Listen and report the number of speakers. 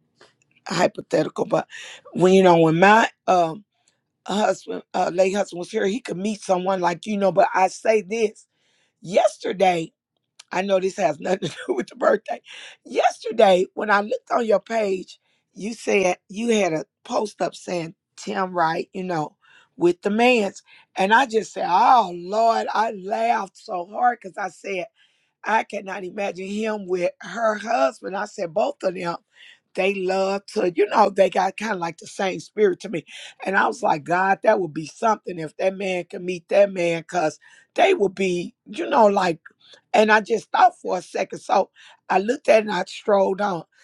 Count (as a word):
one